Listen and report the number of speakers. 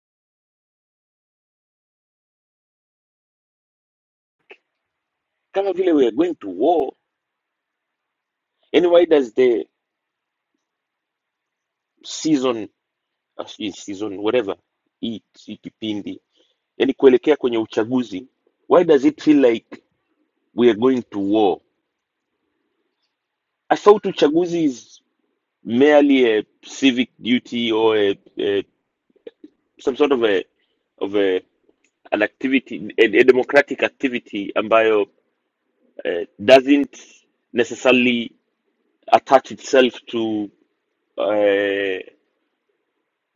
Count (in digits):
1